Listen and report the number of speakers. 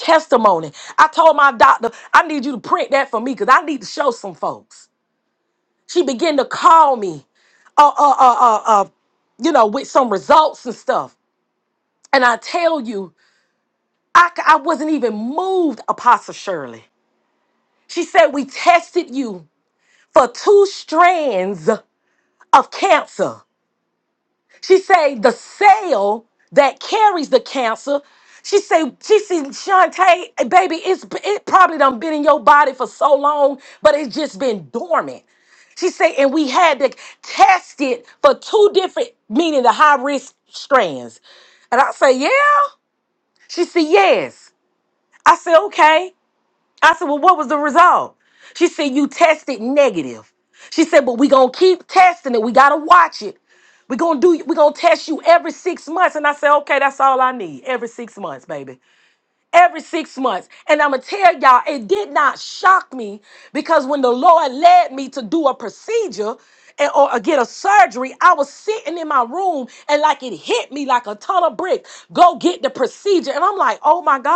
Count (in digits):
1